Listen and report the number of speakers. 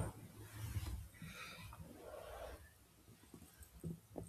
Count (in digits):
0